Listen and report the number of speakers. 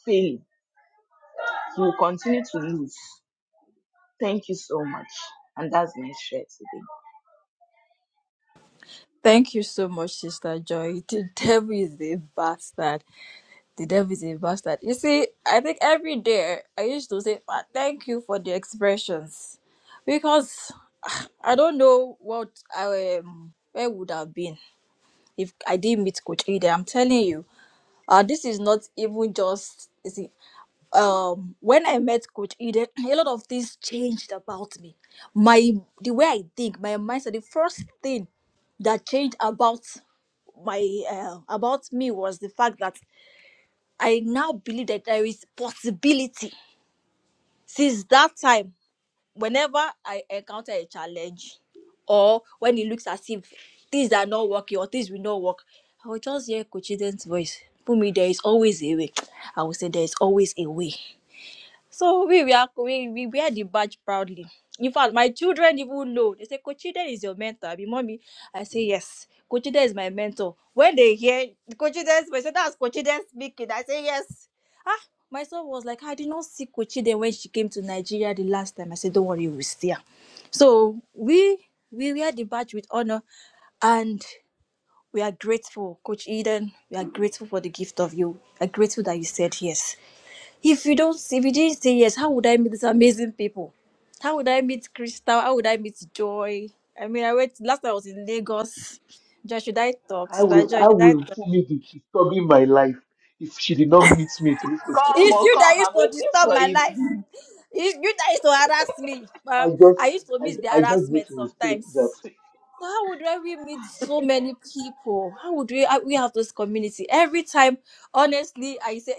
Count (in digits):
3